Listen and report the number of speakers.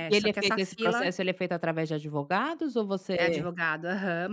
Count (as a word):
two